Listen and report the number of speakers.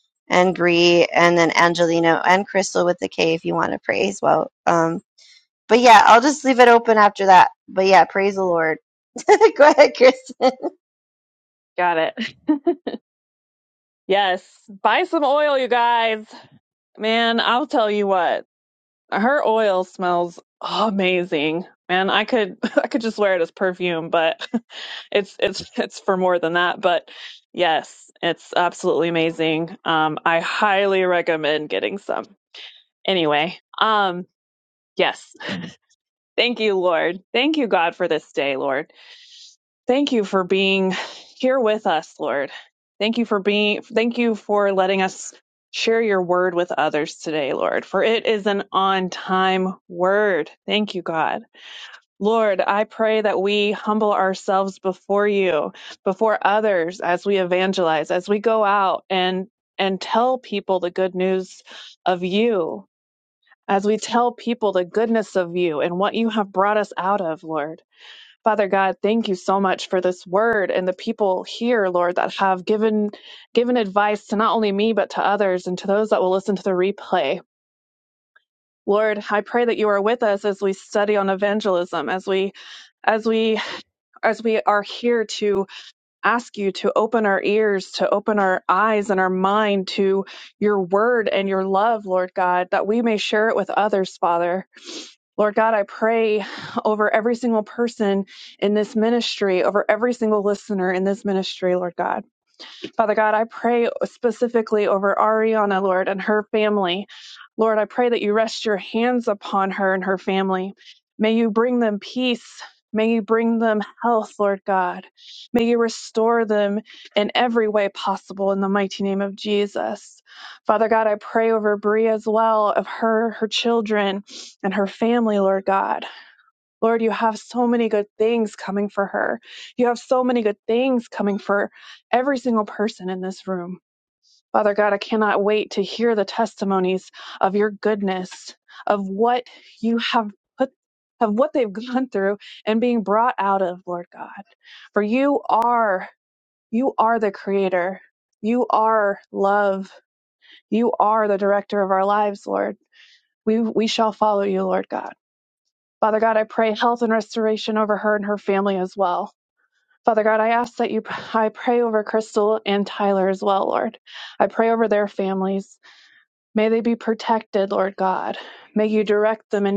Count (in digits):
2